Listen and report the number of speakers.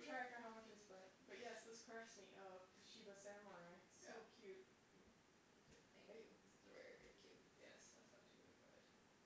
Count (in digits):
2